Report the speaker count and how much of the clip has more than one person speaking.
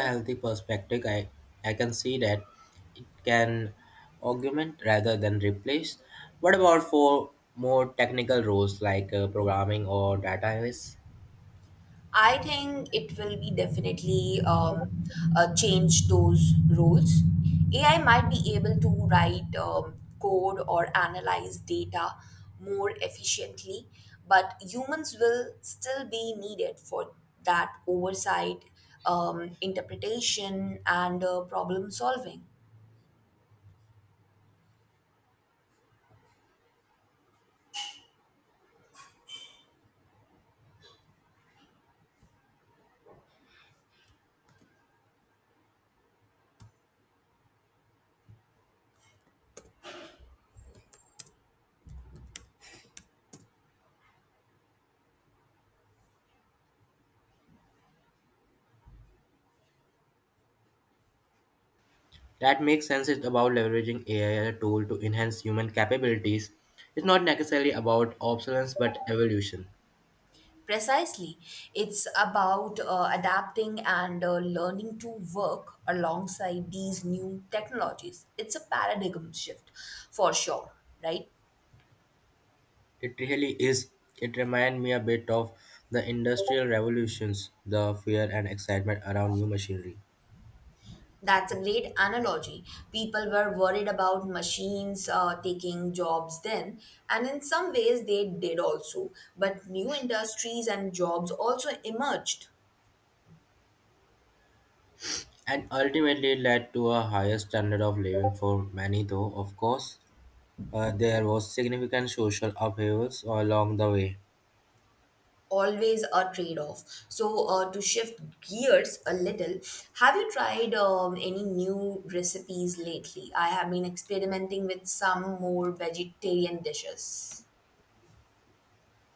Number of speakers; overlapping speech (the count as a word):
two, no overlap